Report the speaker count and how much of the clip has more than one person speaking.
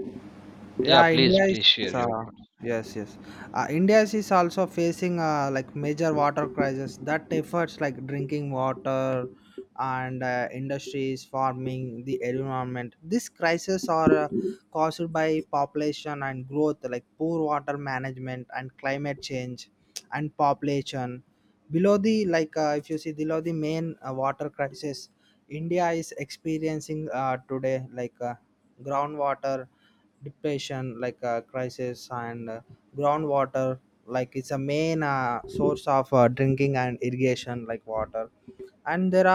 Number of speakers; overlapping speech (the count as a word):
two, about 2%